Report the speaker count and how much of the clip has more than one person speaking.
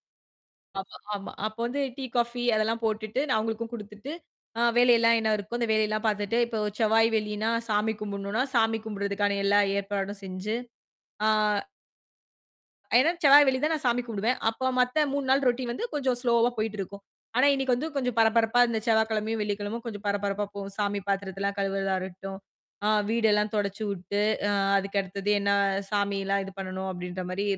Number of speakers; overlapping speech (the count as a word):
one, no overlap